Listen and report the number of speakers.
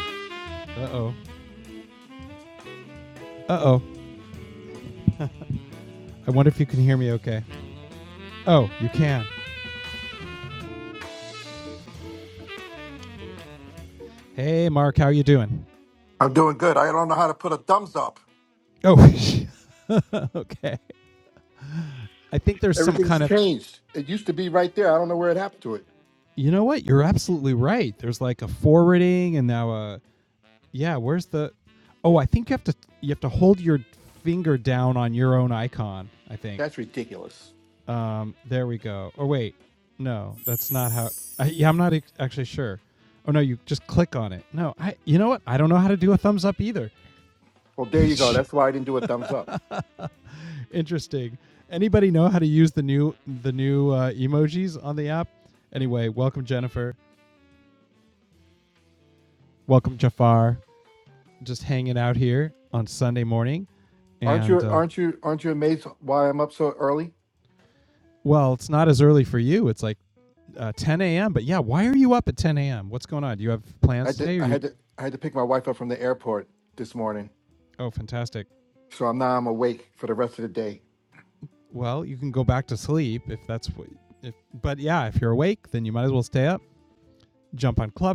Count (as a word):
two